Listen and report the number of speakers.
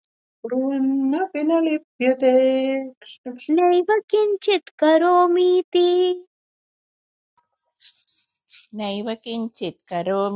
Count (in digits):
3